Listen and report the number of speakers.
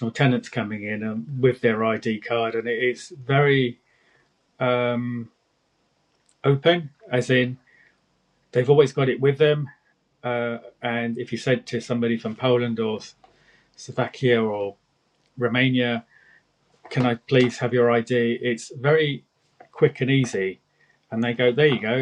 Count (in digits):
1